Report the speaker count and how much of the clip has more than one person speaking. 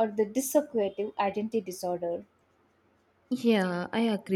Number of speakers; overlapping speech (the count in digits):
2, no overlap